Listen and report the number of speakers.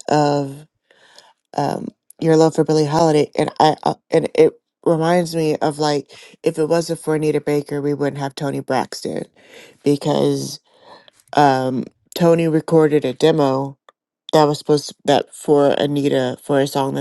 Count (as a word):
one